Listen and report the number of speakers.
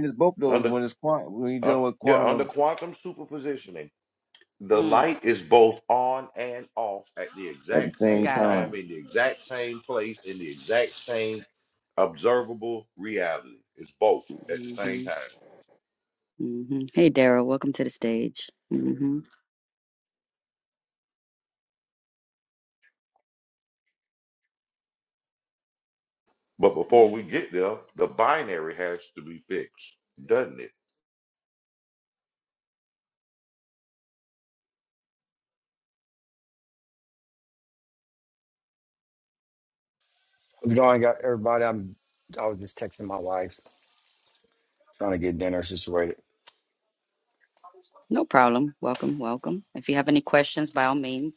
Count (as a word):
four